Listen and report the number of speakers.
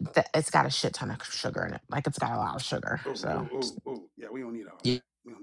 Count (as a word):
two